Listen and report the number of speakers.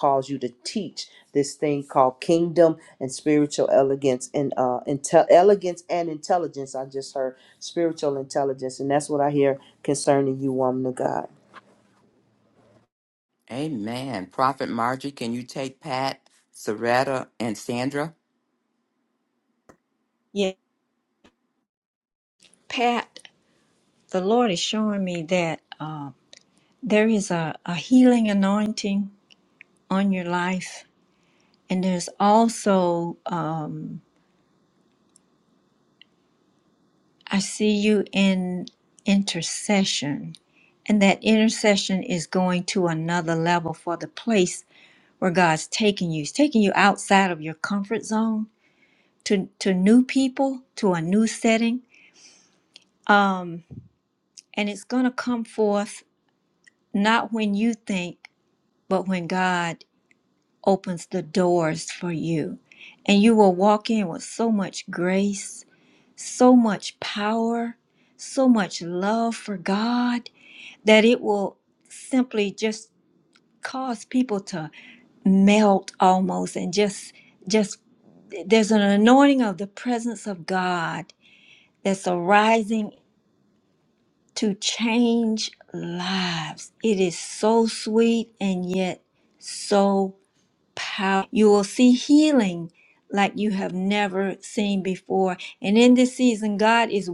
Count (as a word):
three